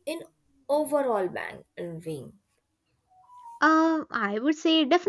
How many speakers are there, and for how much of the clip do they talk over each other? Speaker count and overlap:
two, no overlap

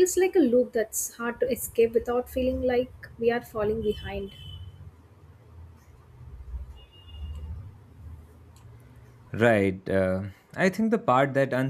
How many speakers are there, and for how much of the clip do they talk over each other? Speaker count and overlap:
two, no overlap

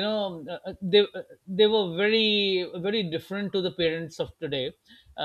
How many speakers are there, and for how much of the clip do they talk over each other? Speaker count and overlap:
one, no overlap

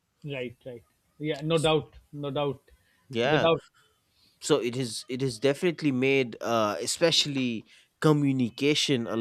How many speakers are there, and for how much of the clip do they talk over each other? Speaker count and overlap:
two, about 3%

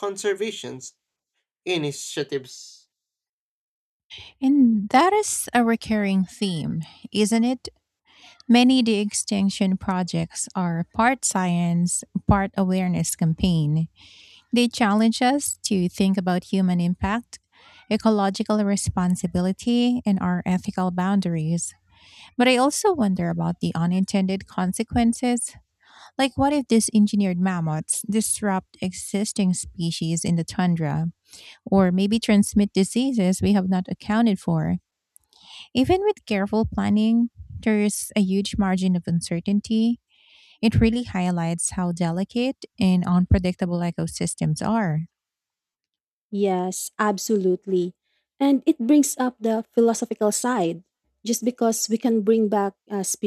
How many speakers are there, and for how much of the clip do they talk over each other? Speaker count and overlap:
three, no overlap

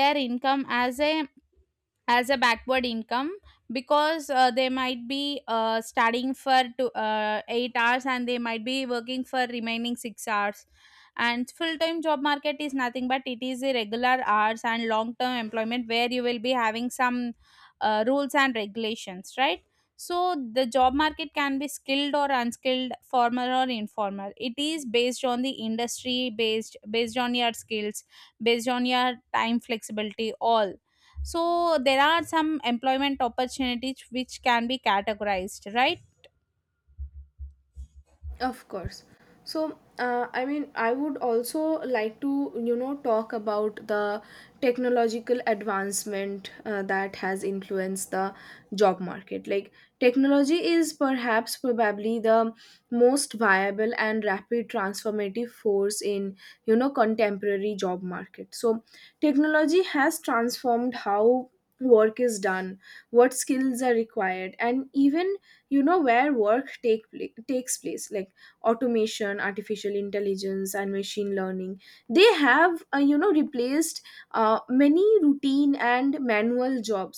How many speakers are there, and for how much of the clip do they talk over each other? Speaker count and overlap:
two, no overlap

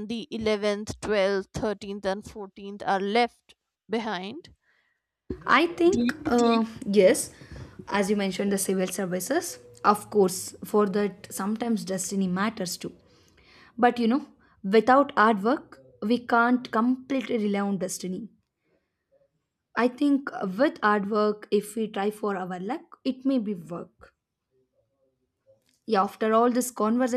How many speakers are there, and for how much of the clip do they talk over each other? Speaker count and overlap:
two, about 1%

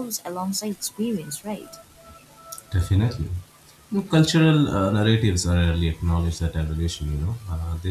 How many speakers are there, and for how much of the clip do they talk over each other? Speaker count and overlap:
two, no overlap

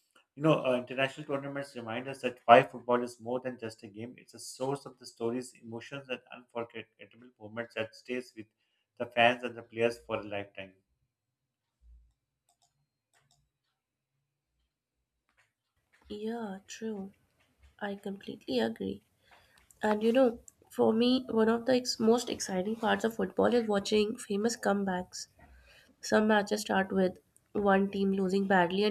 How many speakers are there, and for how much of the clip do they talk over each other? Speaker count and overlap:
two, no overlap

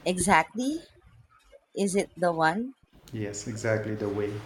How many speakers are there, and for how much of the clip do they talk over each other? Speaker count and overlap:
two, no overlap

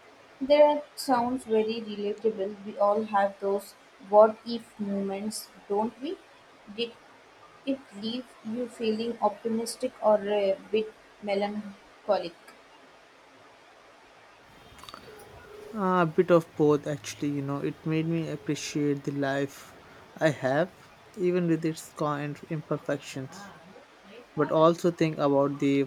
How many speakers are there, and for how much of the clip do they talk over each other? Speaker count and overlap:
two, no overlap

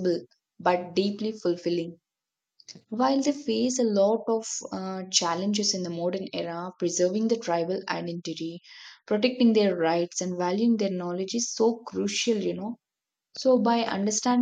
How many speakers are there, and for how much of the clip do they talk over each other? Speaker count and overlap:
one, no overlap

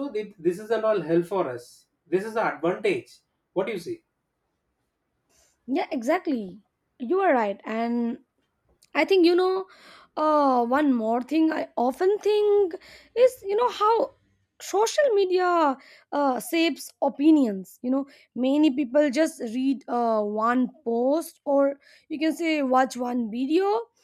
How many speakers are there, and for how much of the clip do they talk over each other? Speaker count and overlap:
two, no overlap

